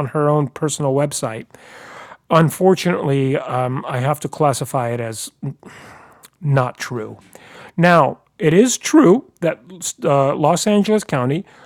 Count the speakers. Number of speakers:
1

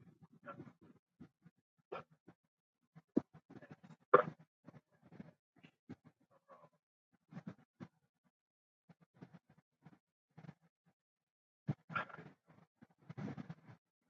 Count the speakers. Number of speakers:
0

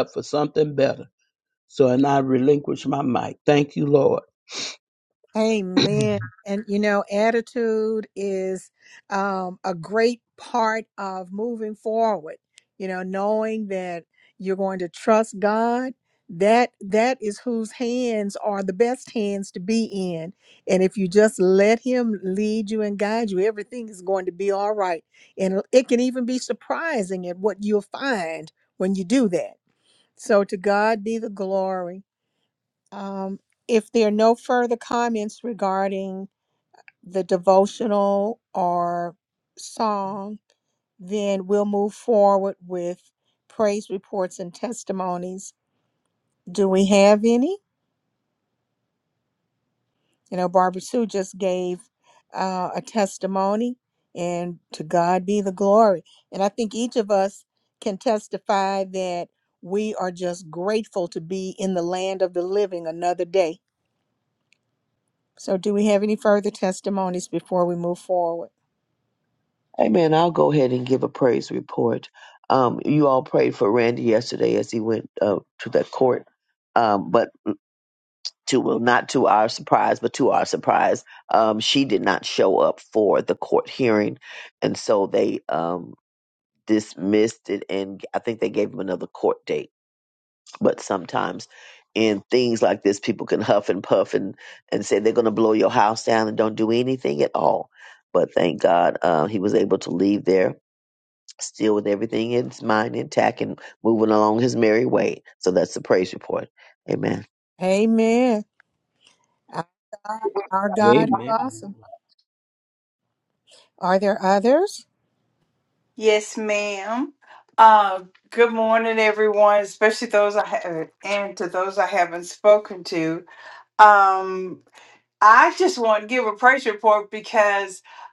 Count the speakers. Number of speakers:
4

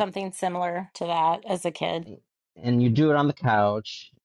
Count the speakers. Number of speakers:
2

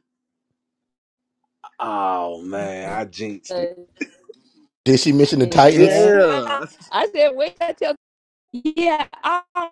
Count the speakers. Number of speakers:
3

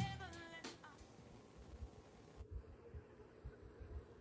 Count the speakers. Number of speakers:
0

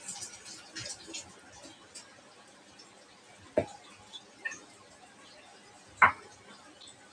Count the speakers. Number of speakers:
0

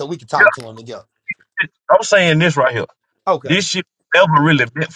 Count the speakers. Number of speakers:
2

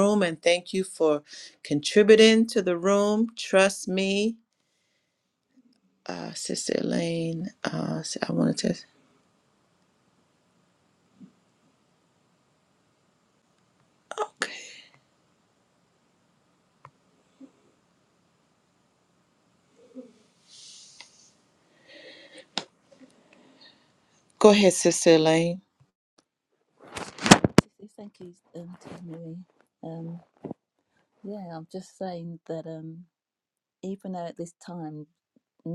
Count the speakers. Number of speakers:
2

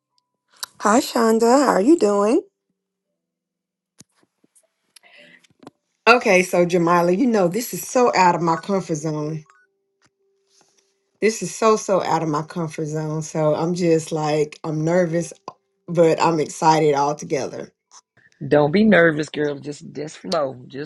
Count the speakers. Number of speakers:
2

